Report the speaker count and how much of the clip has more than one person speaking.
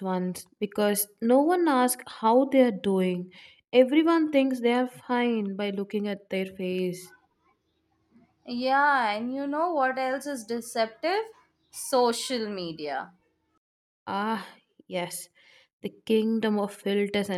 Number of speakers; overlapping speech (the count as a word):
two, no overlap